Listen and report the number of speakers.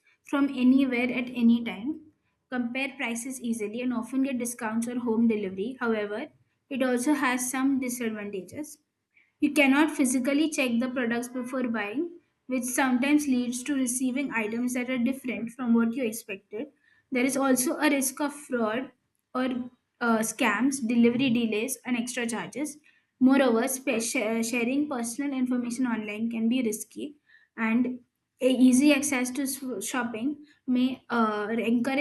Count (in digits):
1